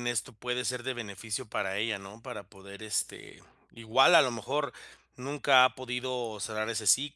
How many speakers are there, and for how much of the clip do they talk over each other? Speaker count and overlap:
one, no overlap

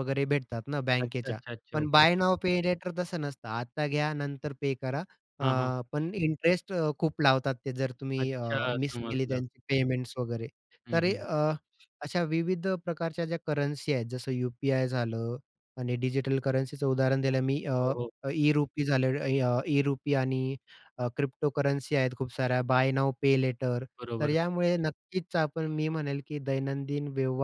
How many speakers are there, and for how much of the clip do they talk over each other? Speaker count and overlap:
two, about 10%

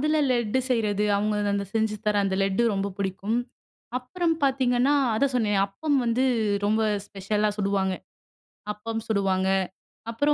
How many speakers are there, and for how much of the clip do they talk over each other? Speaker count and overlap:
one, no overlap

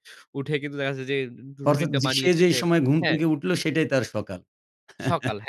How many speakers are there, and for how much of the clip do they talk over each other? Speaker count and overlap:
two, about 21%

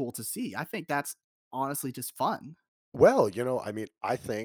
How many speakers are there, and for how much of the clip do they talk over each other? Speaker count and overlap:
two, no overlap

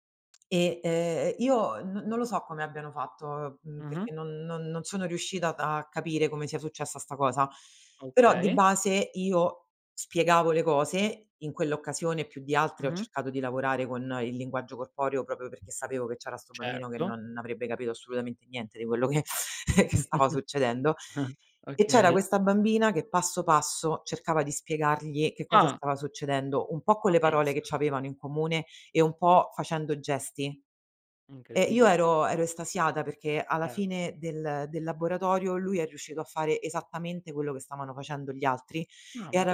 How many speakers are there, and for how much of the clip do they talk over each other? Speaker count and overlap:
two, about 8%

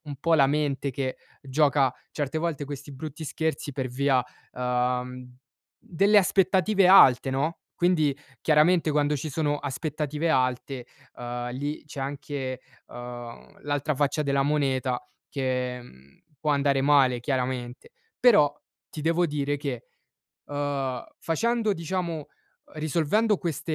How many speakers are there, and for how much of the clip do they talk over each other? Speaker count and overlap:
one, no overlap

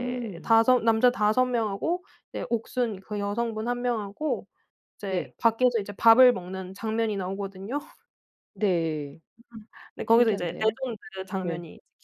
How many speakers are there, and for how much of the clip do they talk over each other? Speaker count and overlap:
two, about 11%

